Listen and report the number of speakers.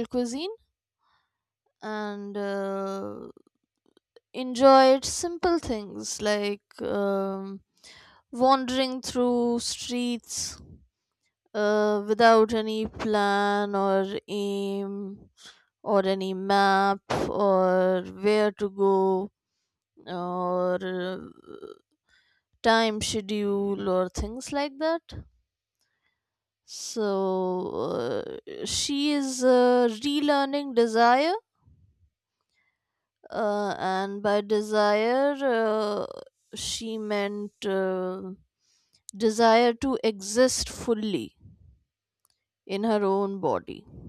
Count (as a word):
one